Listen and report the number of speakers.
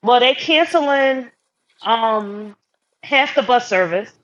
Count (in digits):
1